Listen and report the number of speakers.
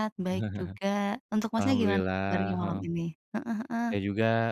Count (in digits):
2